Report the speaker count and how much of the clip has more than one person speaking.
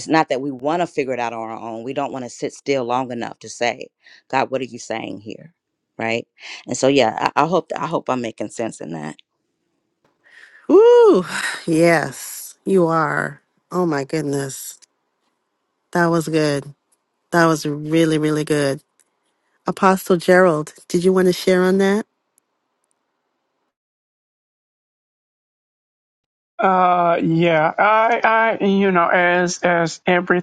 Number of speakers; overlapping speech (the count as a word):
three, no overlap